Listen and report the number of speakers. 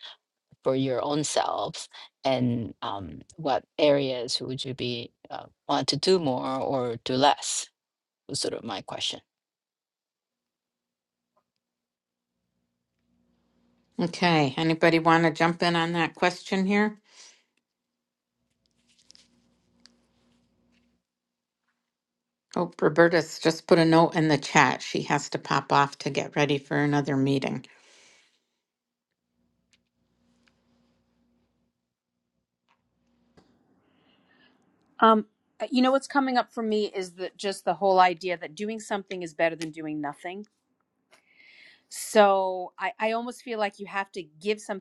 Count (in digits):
3